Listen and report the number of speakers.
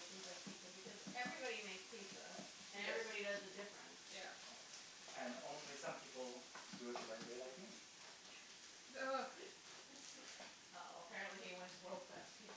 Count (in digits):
3